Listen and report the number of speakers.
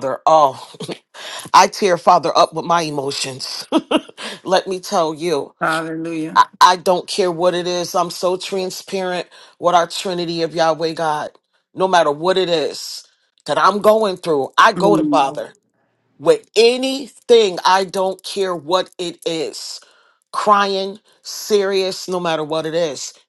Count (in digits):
2